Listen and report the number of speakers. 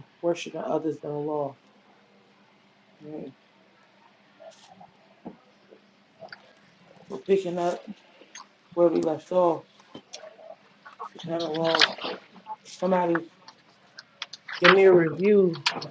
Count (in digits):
1